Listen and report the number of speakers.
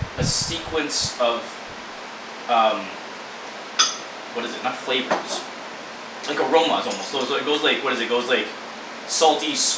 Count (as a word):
one